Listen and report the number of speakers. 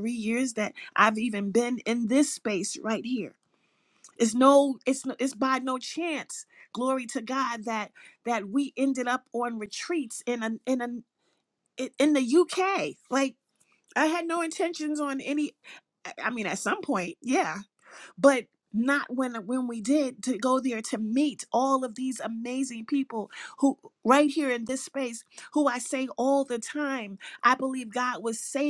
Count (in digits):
1